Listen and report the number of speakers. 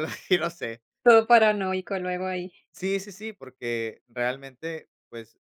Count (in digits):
2